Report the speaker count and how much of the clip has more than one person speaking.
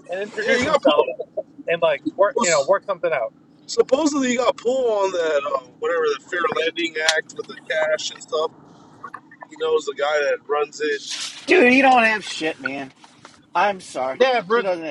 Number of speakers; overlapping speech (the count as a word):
three, about 8%